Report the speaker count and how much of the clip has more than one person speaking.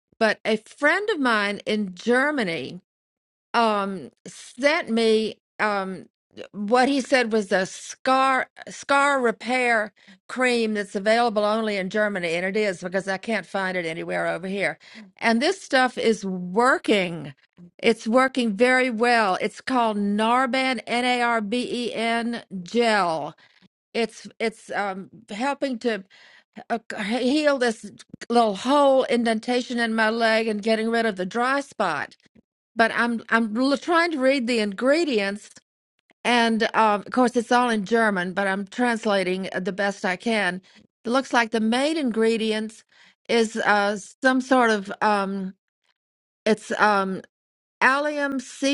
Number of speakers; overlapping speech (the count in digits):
1, no overlap